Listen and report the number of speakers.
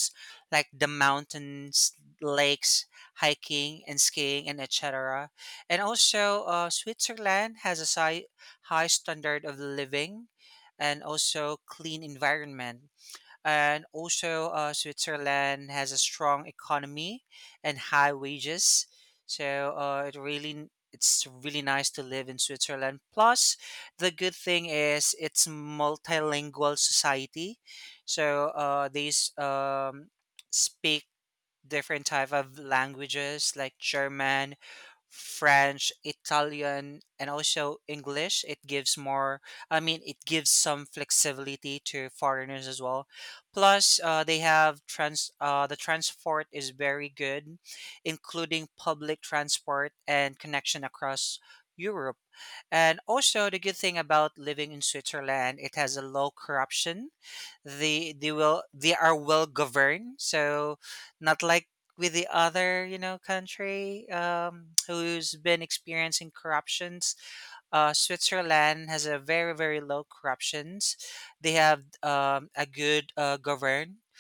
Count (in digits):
1